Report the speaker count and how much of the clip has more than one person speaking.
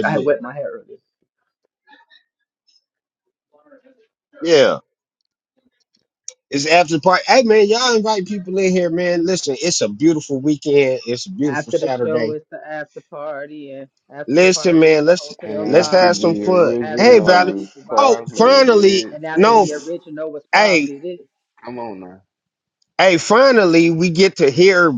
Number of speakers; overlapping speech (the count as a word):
three, about 27%